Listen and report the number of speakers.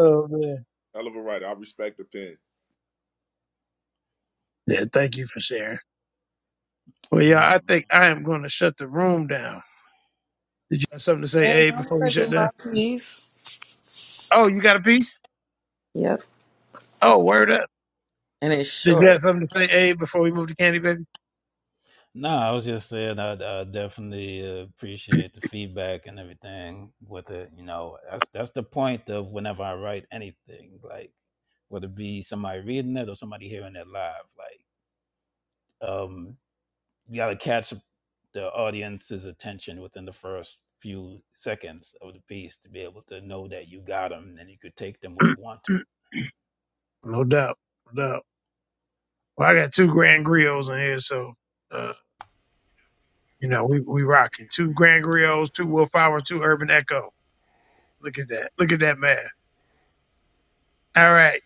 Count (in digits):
4